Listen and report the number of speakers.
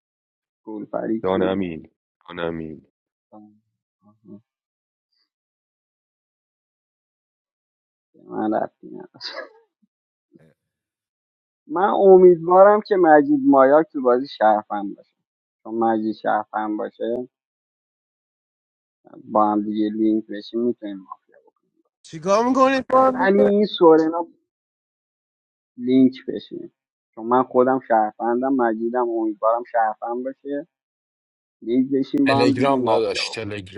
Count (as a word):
four